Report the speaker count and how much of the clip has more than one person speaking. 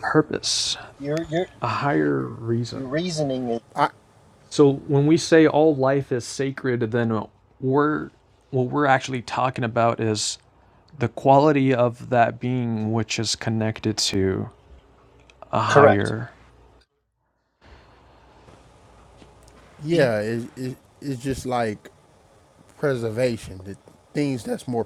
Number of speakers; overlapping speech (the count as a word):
three, about 3%